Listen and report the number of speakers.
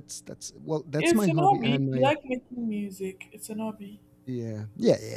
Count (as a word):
two